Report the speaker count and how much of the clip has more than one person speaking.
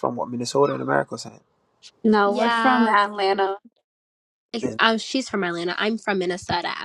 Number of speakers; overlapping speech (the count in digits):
3, about 13%